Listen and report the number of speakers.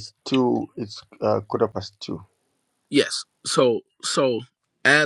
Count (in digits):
2